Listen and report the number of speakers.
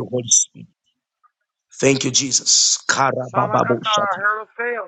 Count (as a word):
two